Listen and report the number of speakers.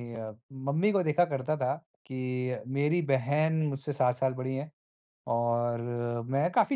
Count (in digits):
1